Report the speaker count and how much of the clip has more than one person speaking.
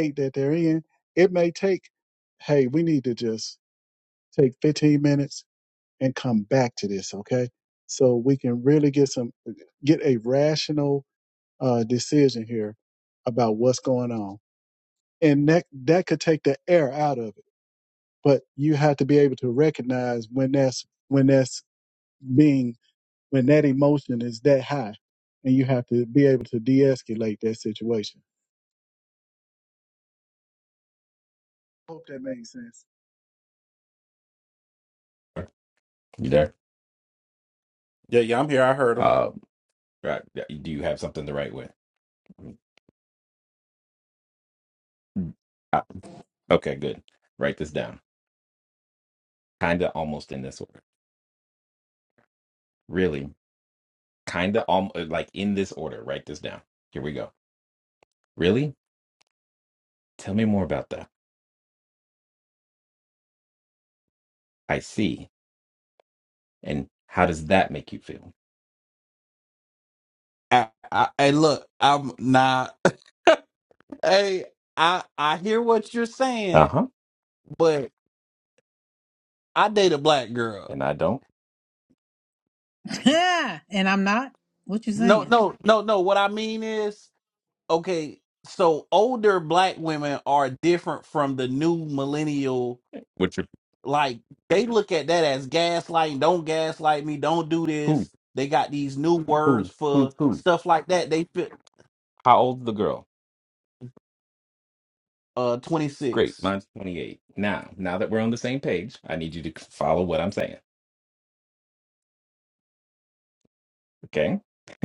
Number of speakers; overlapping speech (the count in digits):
4, about 1%